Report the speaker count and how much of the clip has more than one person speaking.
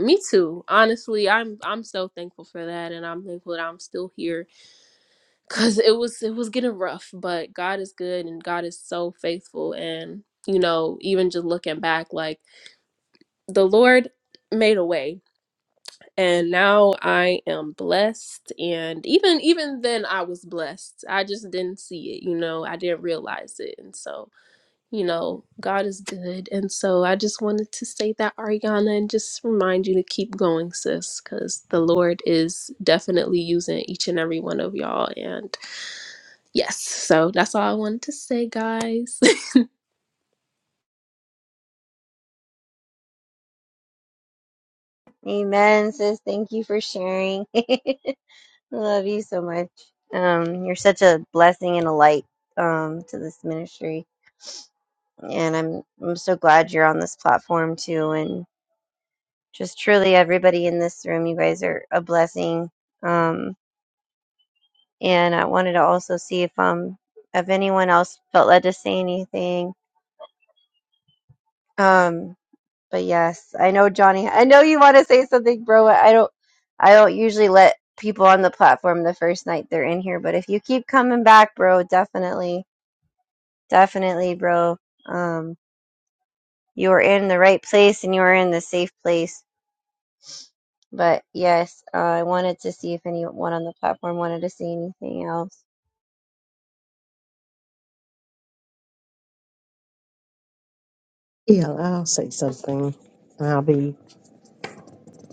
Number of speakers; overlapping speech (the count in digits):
3, no overlap